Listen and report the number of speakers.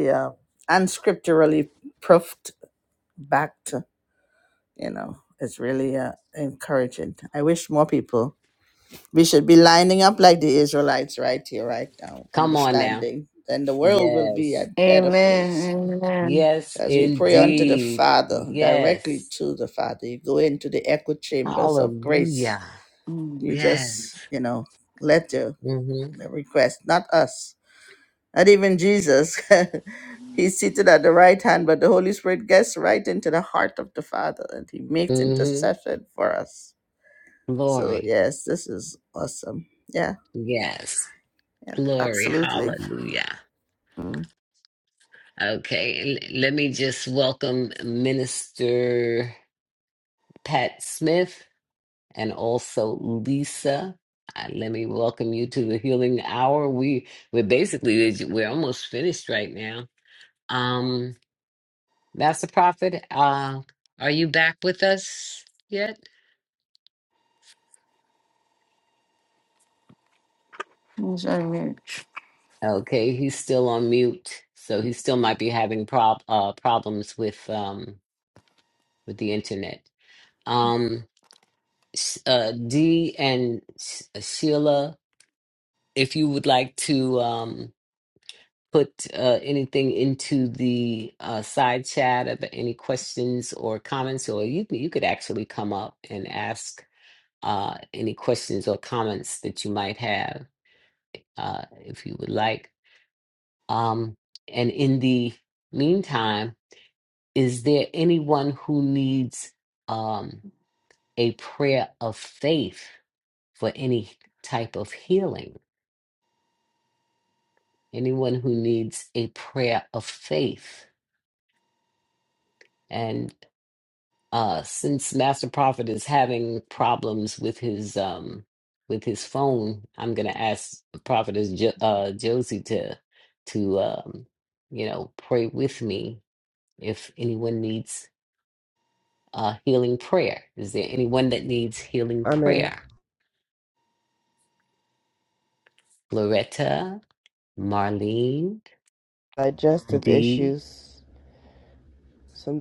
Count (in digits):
4